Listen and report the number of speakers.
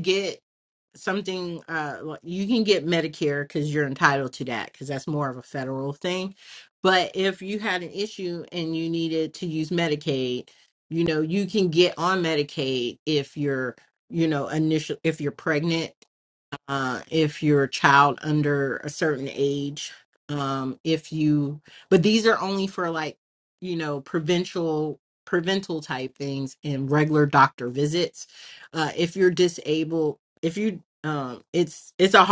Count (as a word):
one